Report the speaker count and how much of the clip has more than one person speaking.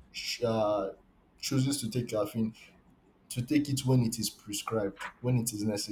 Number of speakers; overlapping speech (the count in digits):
1, no overlap